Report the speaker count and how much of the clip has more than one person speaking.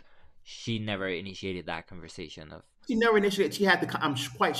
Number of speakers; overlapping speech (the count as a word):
two, no overlap